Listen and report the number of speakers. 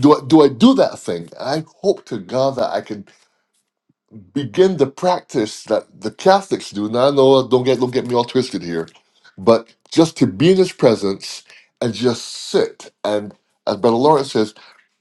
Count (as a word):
one